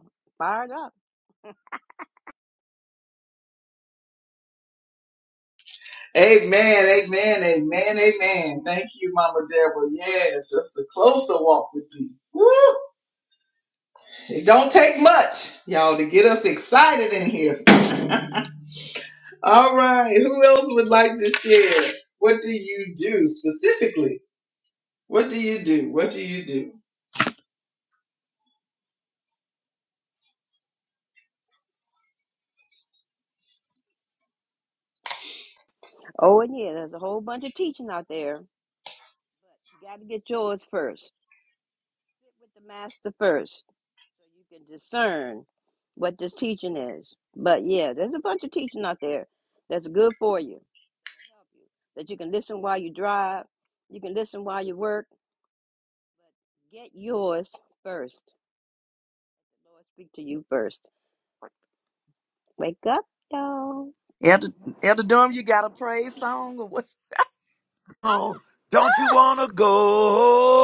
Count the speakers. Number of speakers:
four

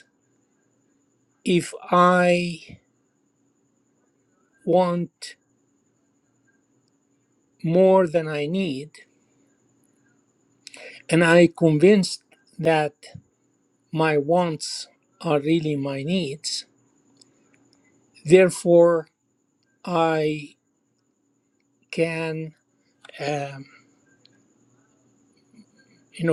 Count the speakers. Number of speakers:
one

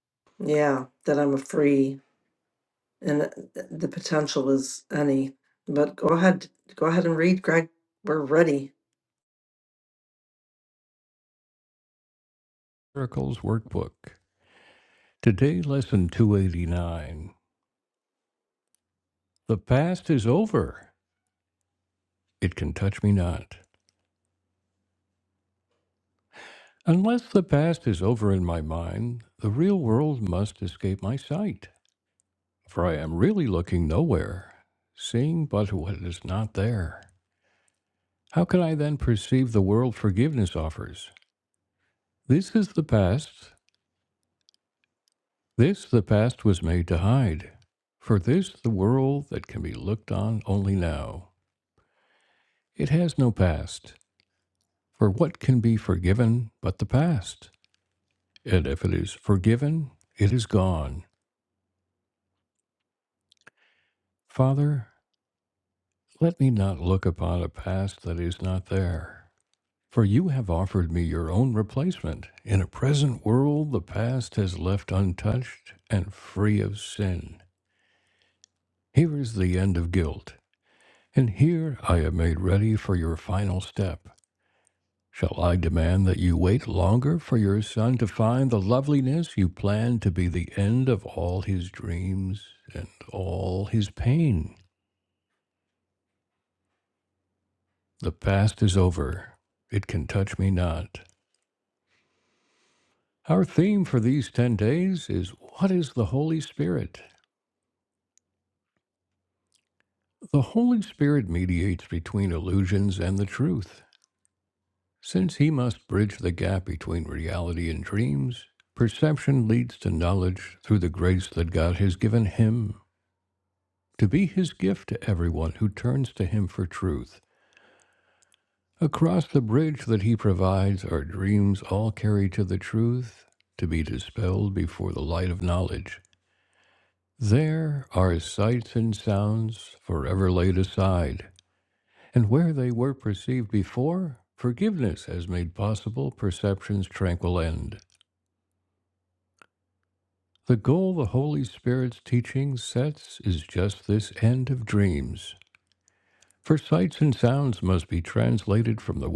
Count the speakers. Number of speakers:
two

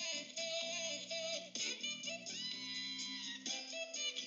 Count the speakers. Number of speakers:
zero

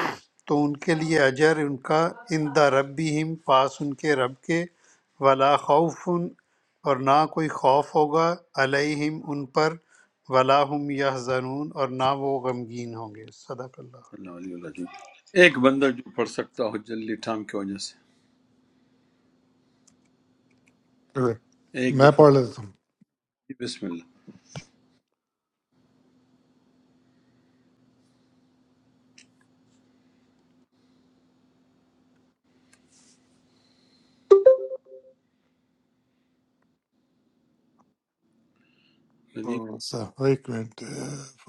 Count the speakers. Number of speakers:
three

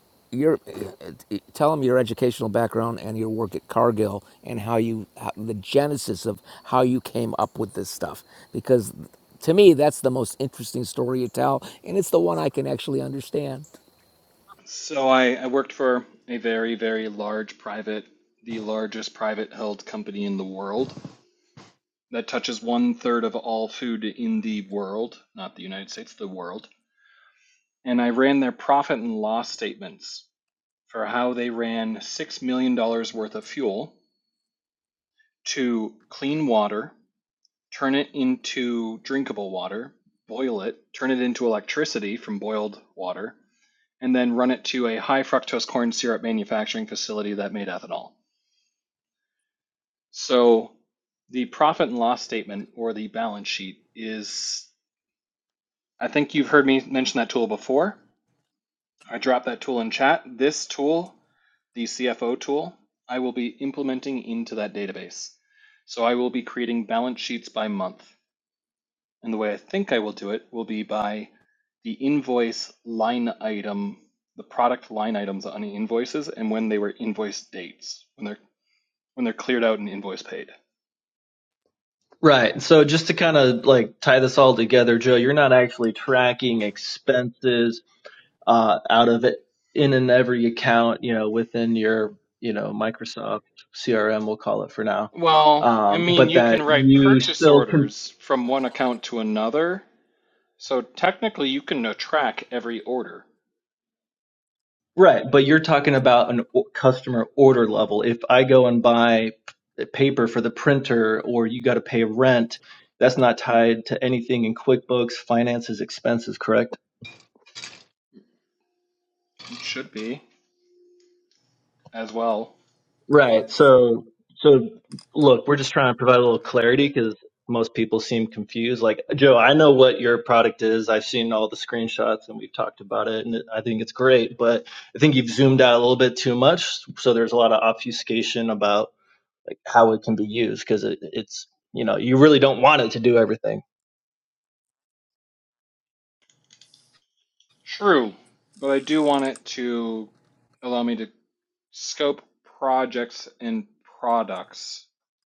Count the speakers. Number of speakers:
three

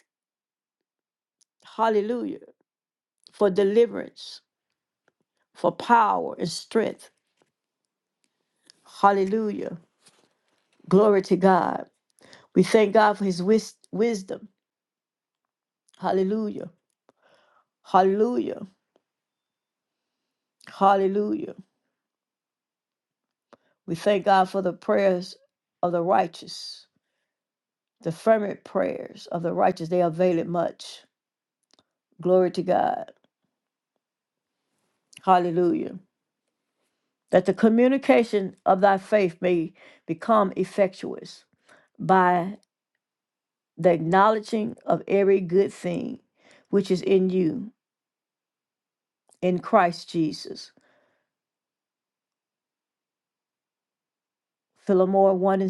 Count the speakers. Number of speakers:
one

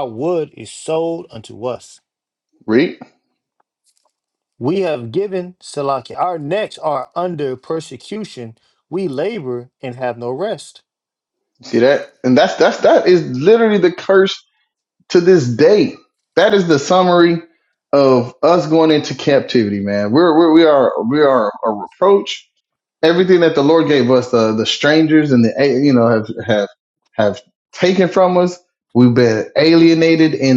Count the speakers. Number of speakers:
two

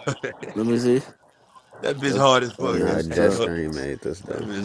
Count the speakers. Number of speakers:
three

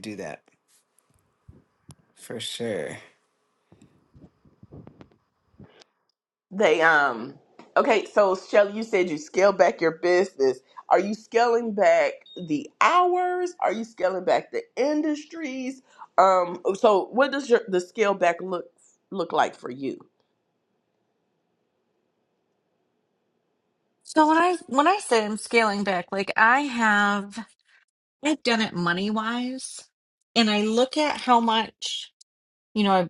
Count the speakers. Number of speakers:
three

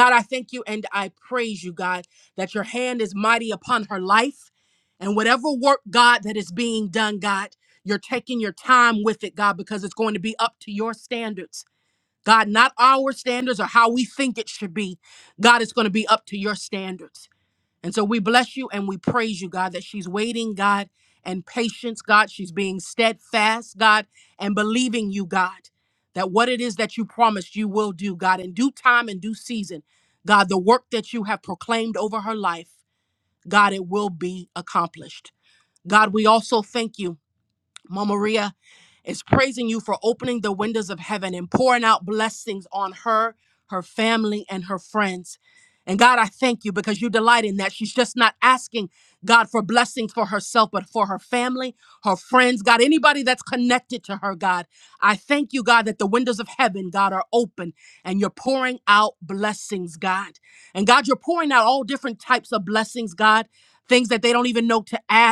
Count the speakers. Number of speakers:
one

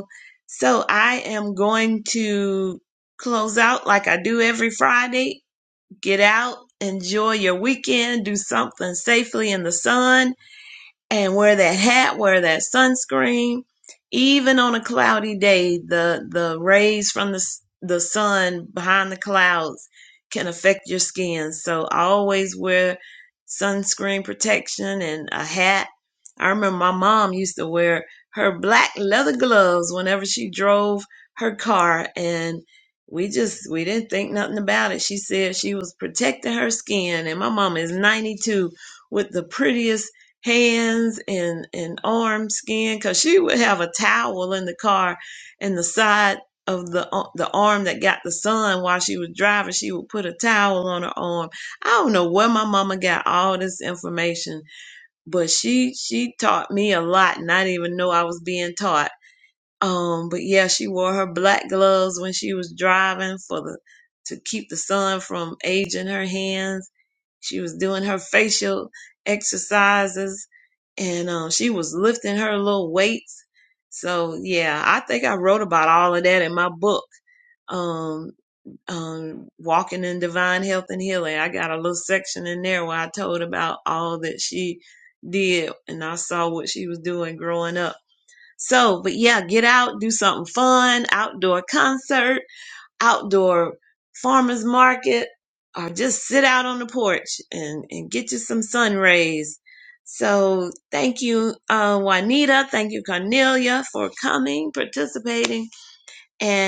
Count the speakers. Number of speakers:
one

